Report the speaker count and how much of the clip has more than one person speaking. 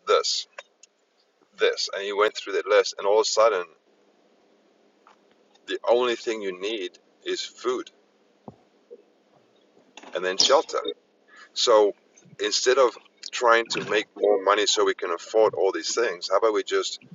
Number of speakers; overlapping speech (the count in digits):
1, no overlap